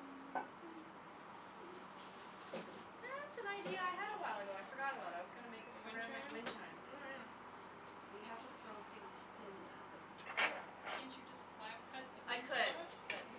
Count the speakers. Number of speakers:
2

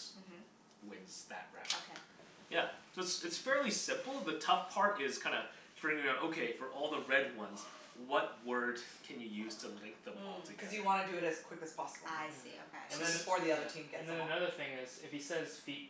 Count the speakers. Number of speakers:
4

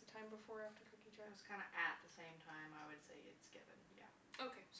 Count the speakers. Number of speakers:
2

